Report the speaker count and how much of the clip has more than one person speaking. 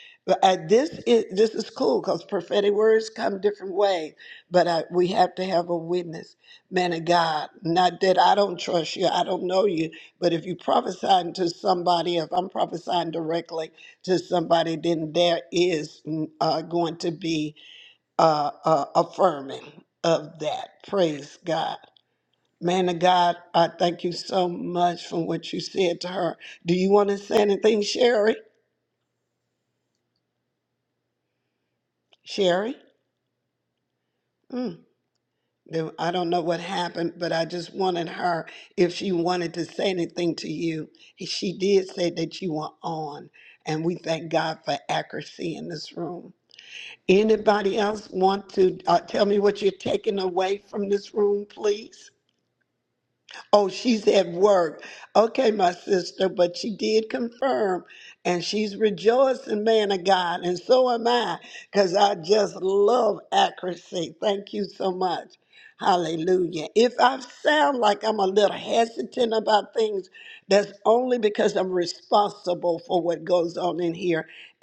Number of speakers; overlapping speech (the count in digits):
1, no overlap